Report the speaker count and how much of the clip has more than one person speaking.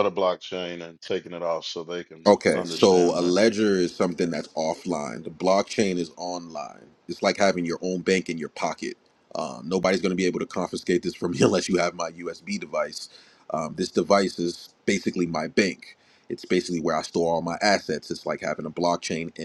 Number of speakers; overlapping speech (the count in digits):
2, about 4%